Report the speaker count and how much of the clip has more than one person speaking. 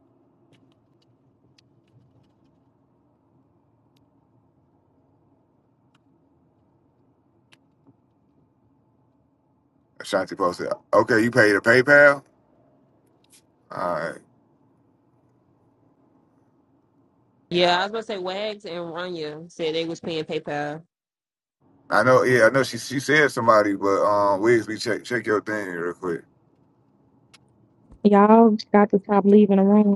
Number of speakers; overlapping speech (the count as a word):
three, no overlap